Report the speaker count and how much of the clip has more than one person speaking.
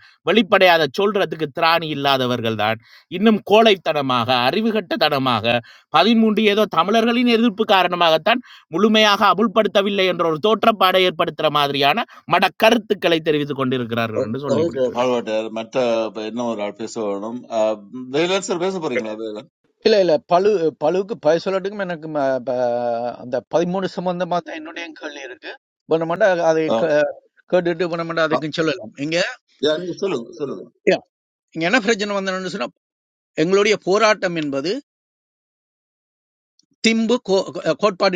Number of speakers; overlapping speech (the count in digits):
3, about 3%